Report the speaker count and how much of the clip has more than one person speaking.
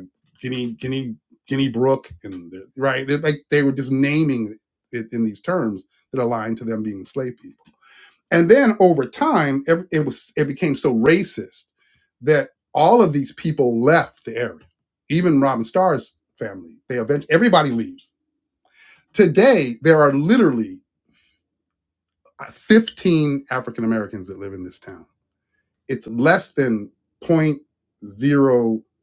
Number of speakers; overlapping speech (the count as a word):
one, no overlap